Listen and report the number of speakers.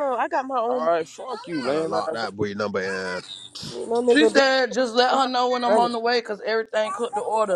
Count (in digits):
4